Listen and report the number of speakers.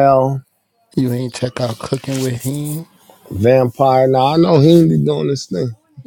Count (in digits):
2